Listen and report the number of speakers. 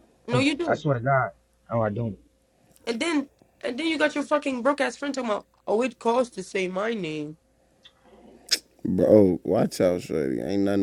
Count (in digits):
3